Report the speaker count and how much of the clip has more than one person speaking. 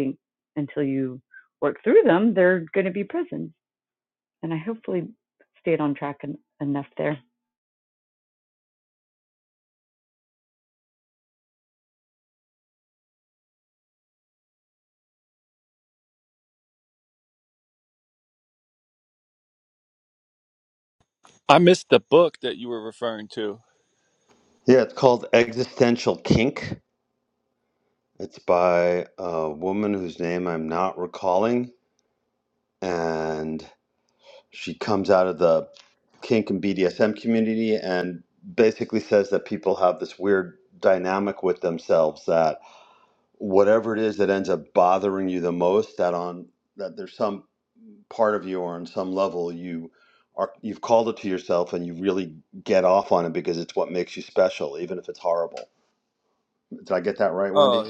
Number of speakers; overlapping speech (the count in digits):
3, about 1%